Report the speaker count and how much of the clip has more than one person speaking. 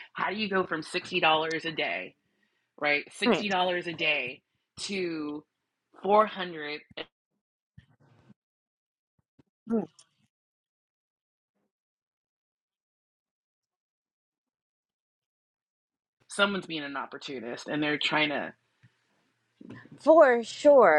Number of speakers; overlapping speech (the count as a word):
two, about 1%